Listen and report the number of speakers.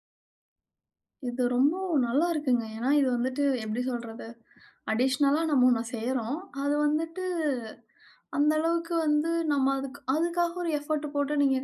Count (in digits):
1